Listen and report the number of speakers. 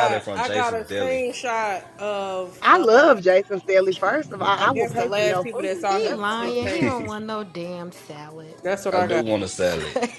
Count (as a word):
four